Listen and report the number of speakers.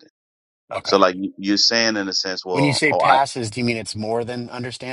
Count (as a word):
two